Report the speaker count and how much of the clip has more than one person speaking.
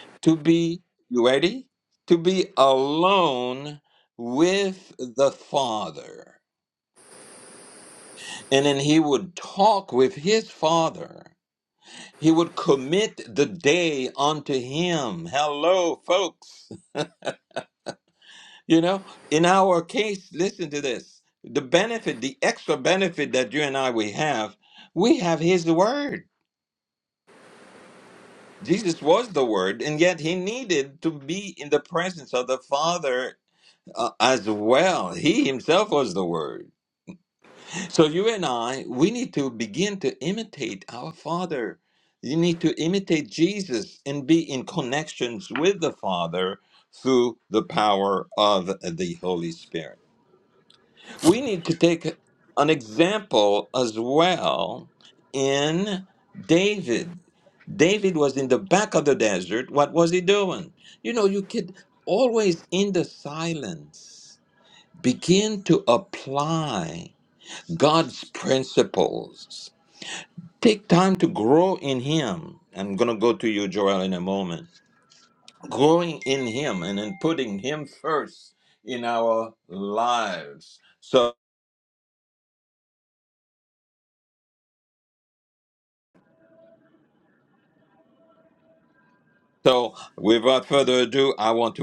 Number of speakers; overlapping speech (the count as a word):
one, no overlap